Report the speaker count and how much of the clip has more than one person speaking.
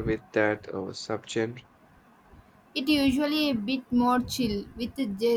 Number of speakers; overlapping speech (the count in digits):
2, no overlap